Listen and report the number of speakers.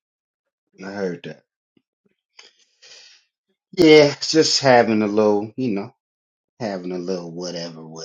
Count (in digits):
1